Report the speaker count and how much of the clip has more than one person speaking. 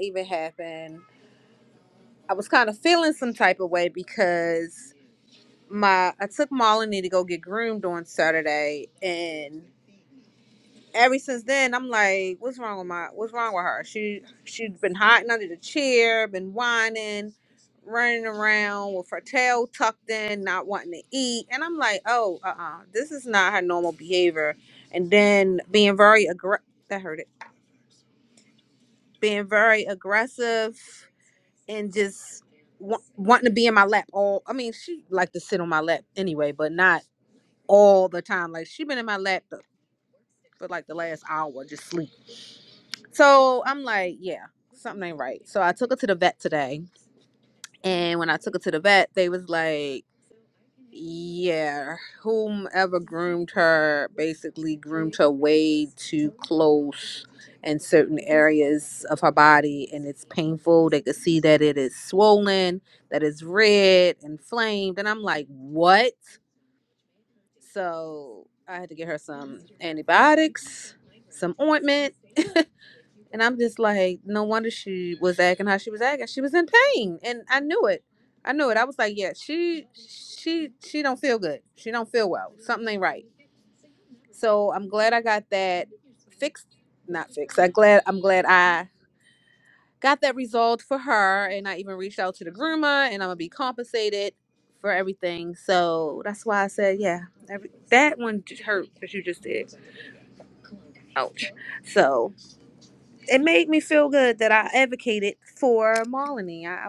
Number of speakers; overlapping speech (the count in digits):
1, no overlap